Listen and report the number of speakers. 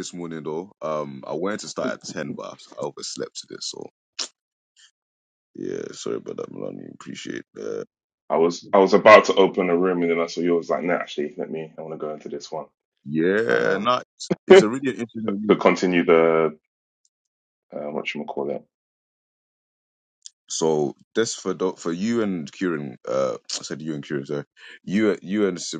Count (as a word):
two